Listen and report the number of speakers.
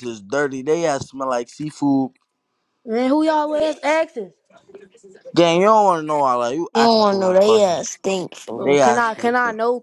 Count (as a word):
three